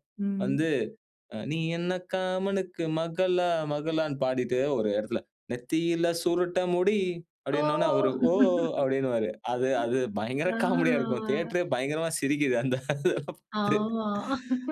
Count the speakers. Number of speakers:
2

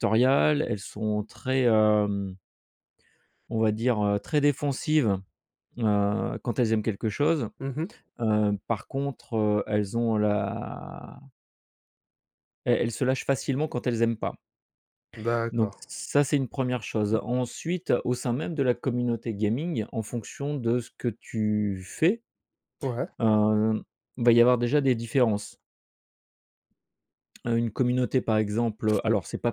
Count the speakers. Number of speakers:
2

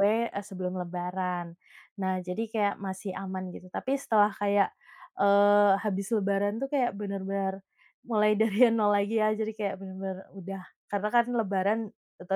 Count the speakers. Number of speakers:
1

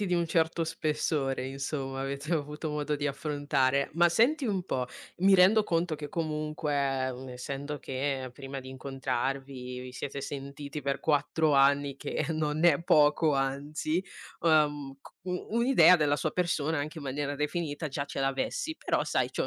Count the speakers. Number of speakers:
1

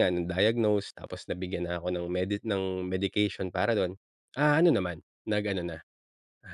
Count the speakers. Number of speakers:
1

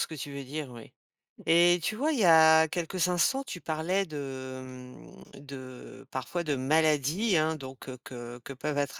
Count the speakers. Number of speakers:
1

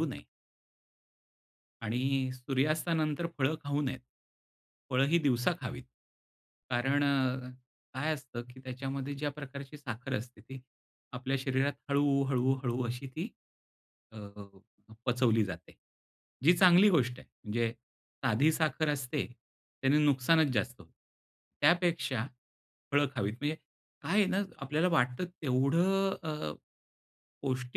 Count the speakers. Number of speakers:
1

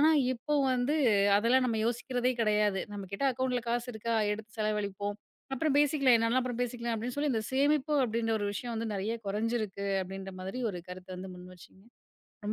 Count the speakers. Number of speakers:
1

